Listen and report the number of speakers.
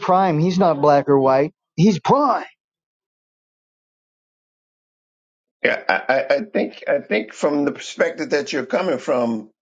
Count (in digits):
2